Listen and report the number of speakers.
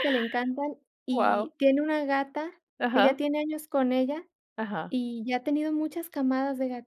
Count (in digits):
2